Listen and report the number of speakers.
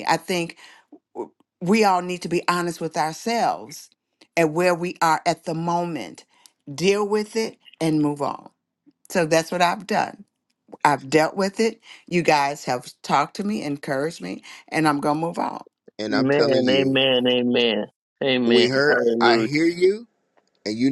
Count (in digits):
3